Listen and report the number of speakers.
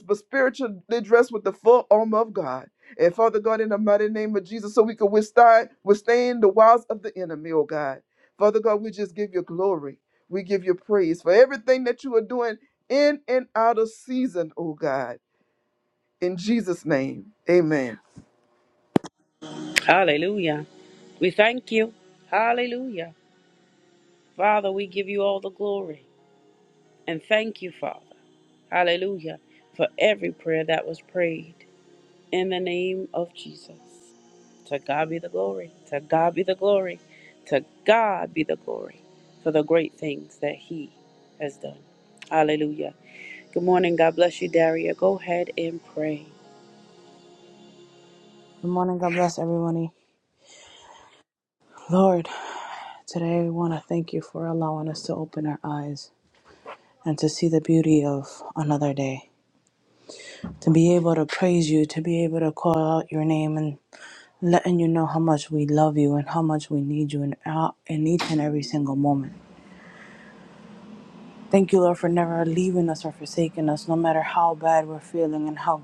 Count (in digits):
3